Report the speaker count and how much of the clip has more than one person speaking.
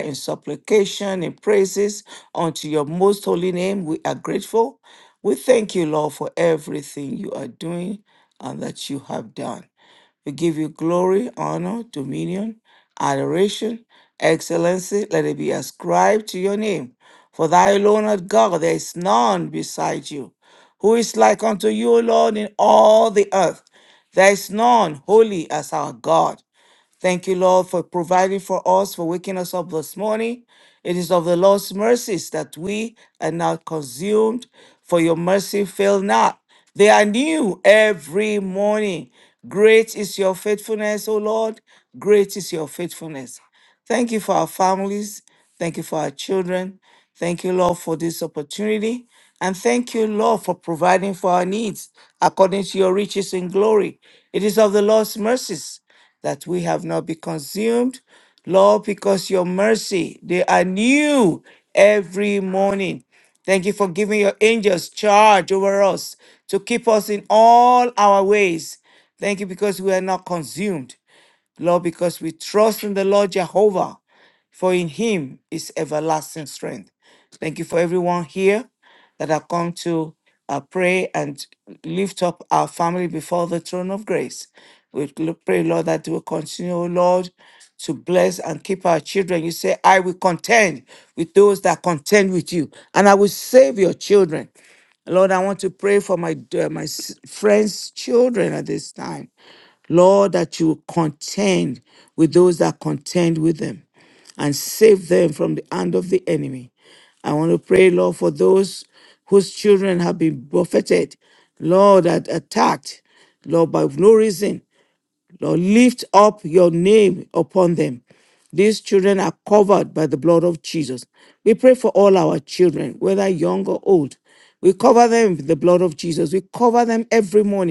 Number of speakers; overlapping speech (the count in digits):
1, no overlap